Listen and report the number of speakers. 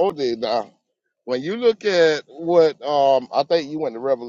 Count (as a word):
one